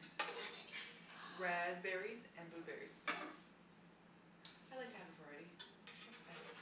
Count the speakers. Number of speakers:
two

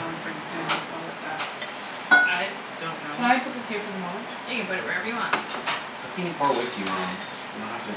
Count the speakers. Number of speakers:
three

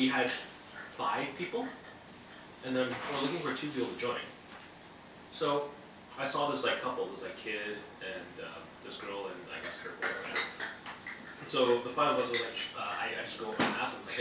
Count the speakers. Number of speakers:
one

